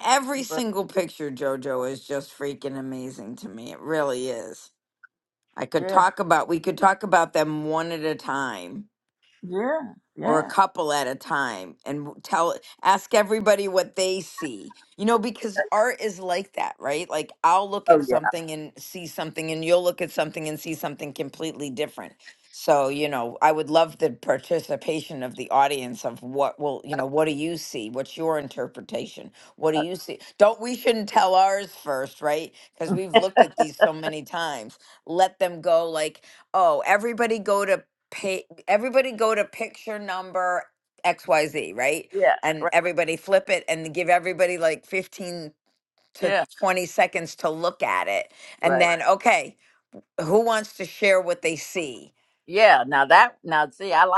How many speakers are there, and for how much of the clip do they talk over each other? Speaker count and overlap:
two, about 3%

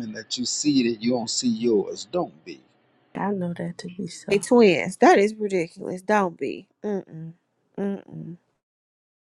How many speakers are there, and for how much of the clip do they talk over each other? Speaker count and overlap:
three, about 2%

